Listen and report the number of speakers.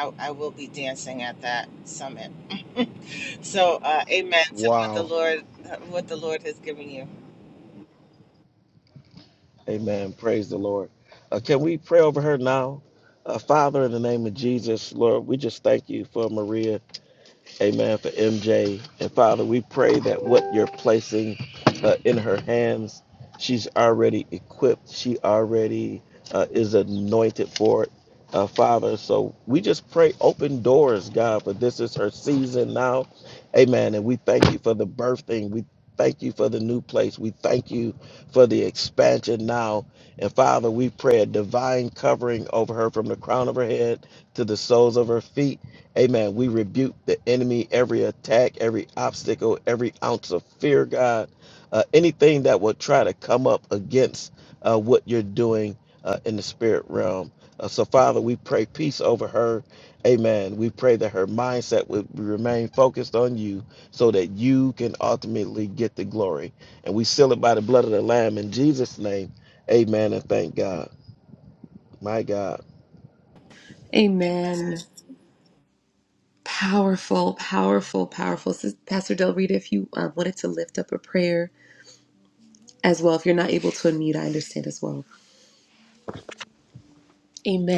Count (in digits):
3